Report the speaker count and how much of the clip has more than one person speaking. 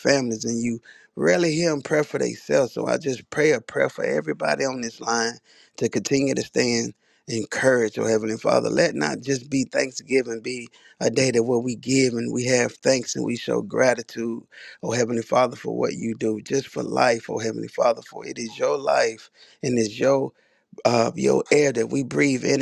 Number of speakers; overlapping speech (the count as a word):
one, no overlap